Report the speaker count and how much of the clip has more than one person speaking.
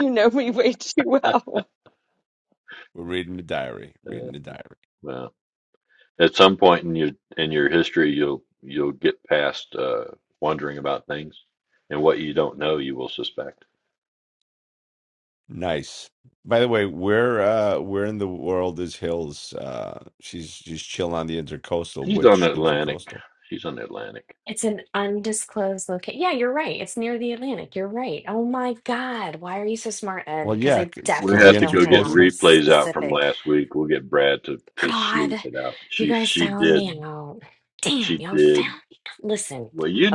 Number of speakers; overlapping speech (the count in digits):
4, about 16%